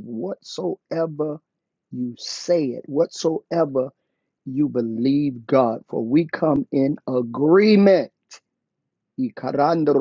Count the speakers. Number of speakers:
one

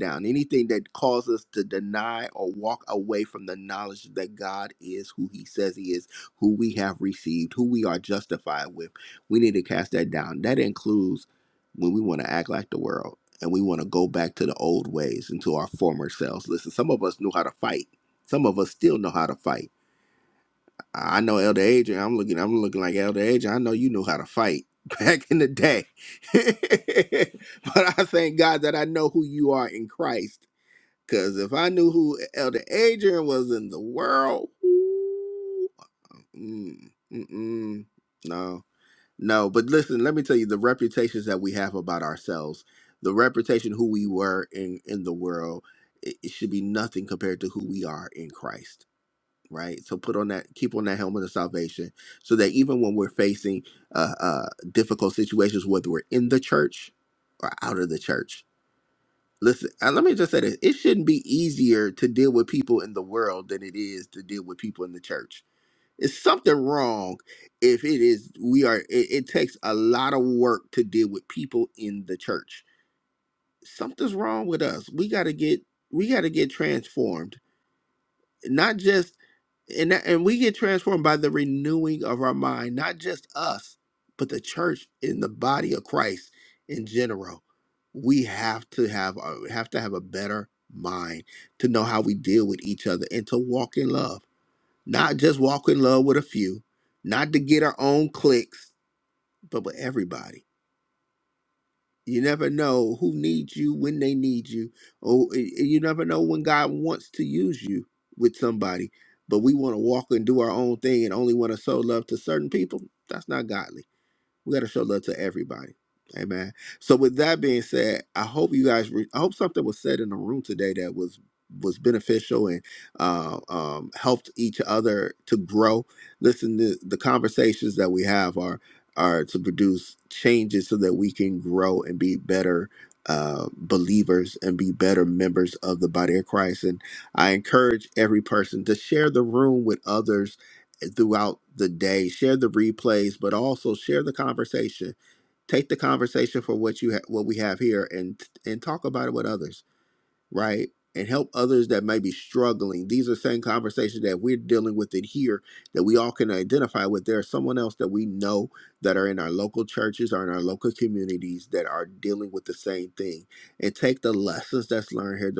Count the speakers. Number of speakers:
one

